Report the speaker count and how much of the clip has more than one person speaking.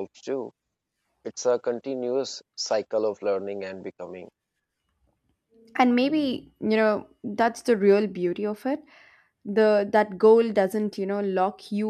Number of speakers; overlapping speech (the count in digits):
2, no overlap